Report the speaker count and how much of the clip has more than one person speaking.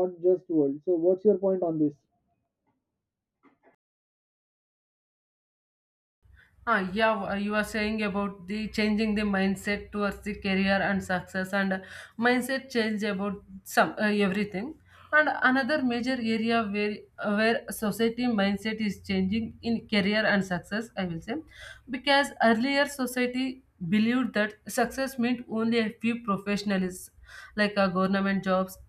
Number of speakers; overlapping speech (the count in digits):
2, no overlap